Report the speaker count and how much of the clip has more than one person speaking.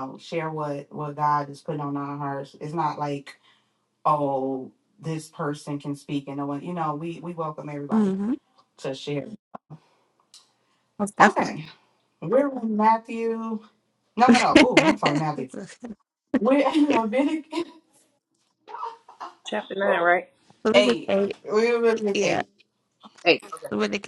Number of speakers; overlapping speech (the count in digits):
3, about 5%